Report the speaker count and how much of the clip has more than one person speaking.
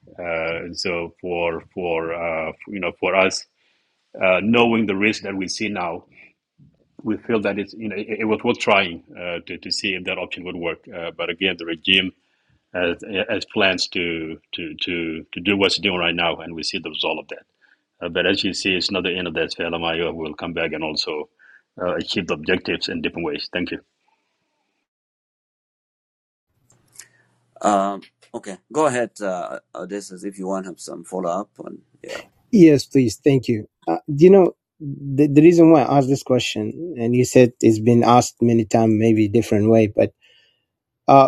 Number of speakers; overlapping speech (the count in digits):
3, no overlap